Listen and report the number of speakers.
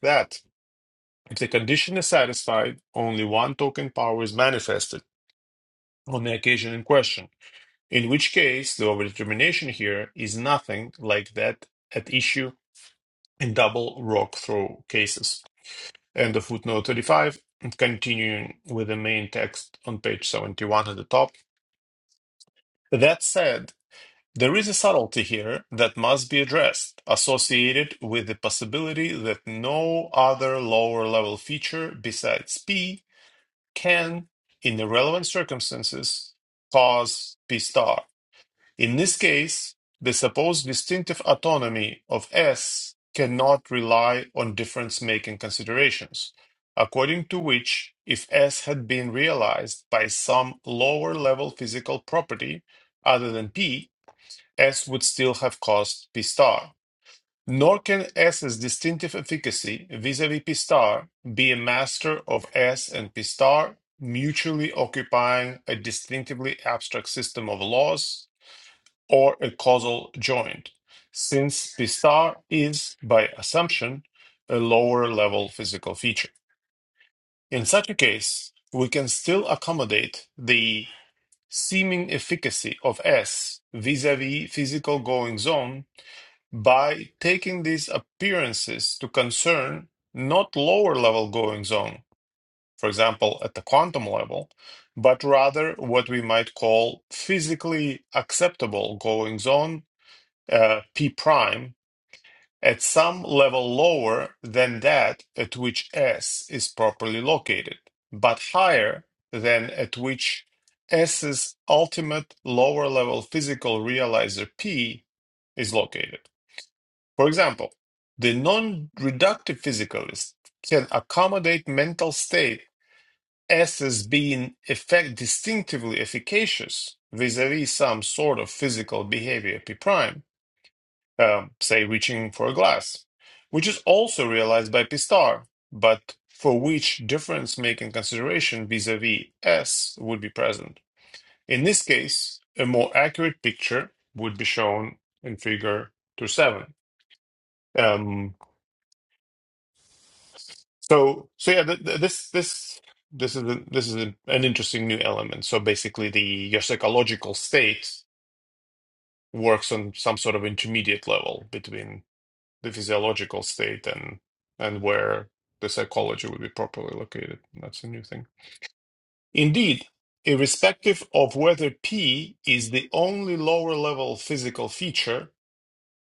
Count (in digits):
1